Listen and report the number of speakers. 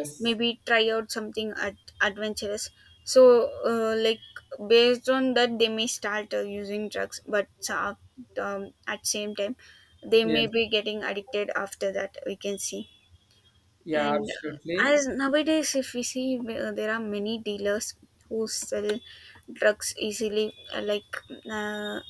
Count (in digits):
2